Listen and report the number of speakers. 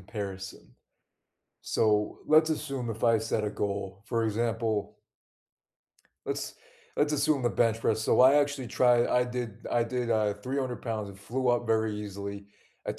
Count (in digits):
1